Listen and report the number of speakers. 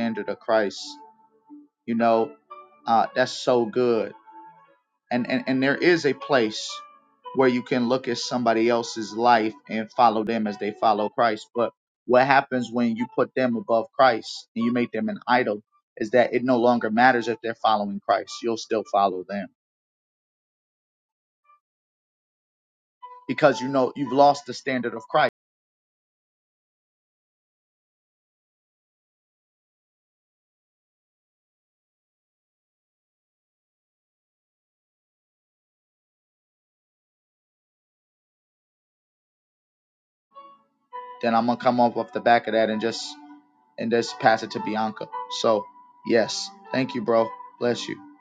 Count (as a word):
one